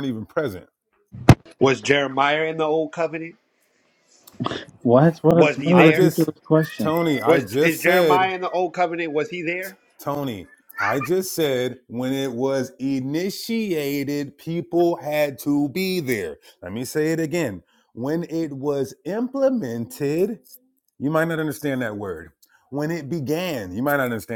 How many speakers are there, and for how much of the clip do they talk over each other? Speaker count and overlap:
three, about 9%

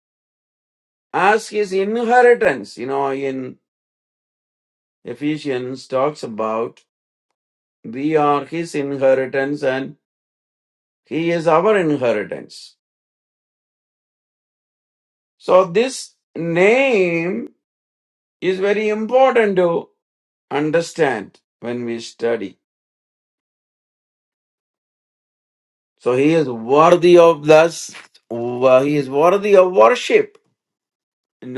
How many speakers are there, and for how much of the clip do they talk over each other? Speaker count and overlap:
one, no overlap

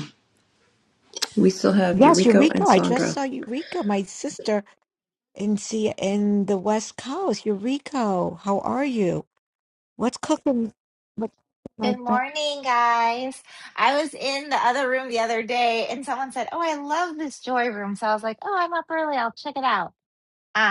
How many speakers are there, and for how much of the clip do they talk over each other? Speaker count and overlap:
three, about 7%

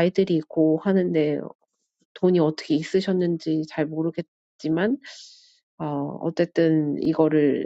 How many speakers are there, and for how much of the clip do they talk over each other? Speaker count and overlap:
one, no overlap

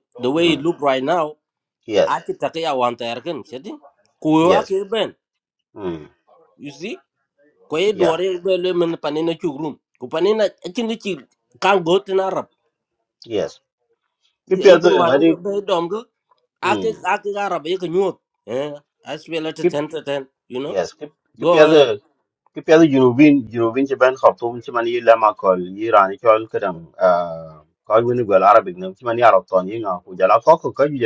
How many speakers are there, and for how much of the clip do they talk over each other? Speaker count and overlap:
two, about 8%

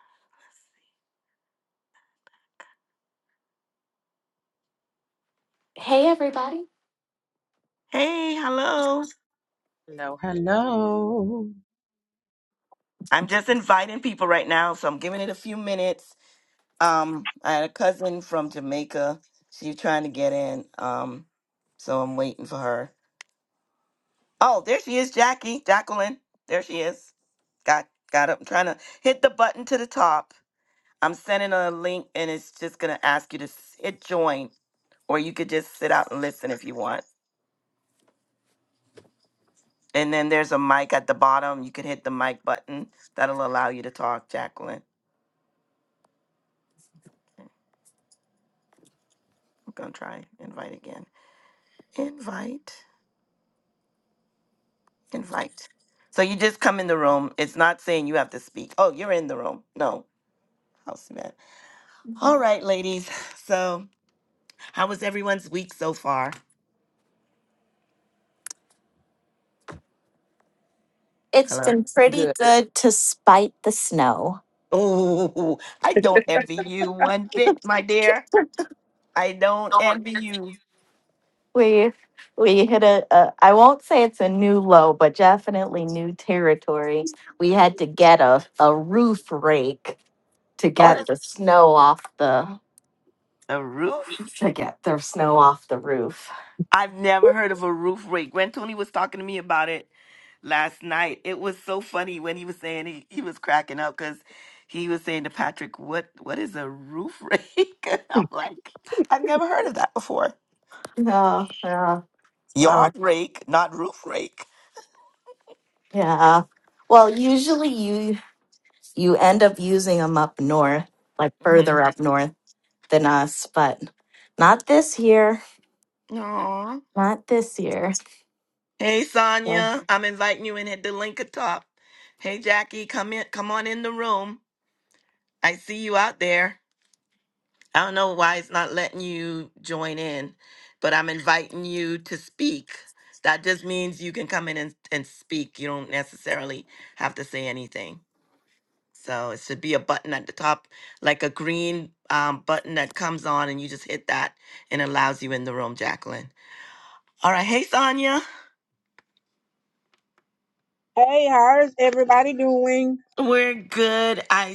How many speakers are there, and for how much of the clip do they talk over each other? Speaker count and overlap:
four, about 1%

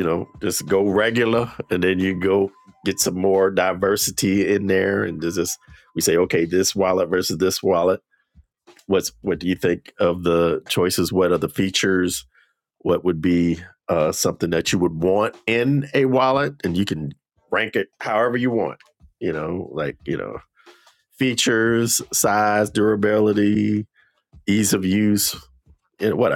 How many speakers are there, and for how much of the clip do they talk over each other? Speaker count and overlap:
one, no overlap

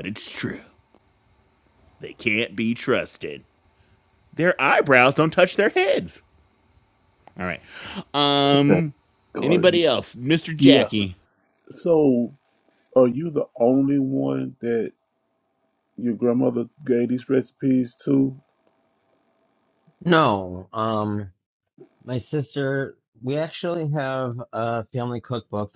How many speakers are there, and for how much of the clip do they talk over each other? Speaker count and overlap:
three, about 3%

